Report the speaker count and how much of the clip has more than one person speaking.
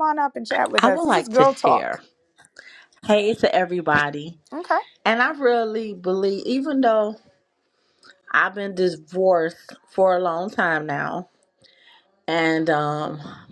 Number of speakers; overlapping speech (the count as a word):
two, about 9%